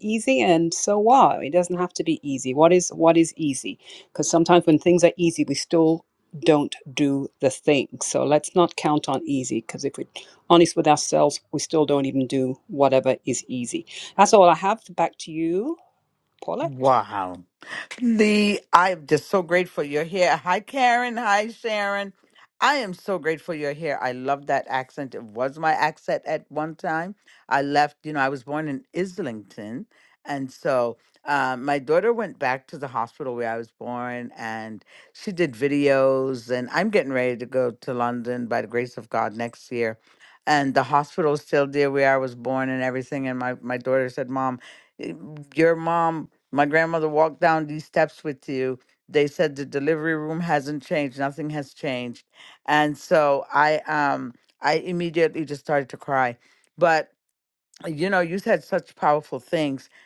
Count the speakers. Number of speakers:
2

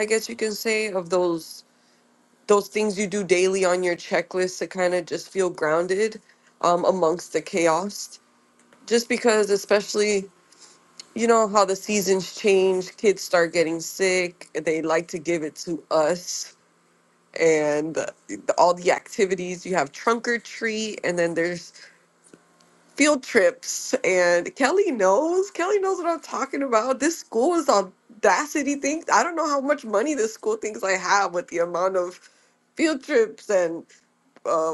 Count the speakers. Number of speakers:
1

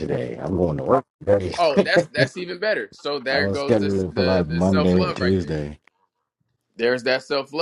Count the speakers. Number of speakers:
2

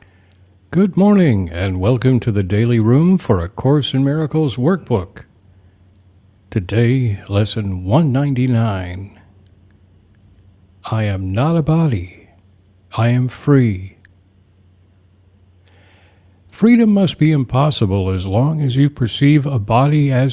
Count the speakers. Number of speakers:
1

